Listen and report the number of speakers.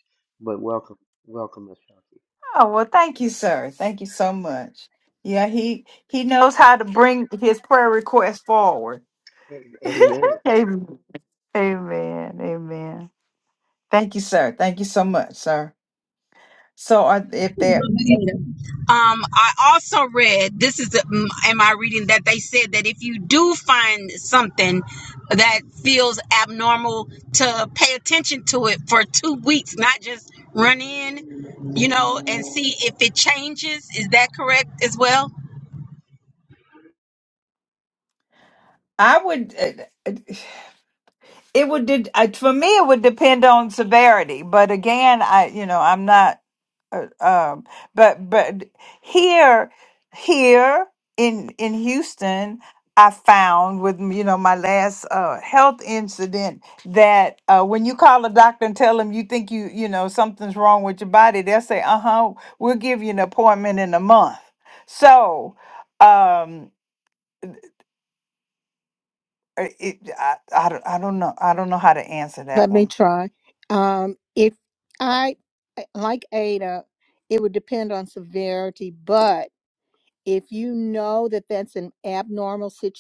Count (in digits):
4